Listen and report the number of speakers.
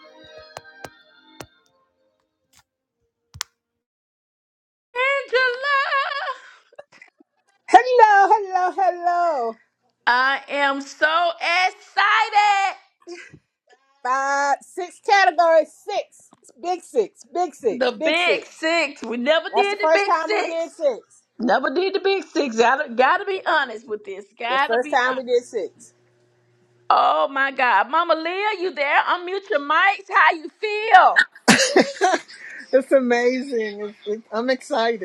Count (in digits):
3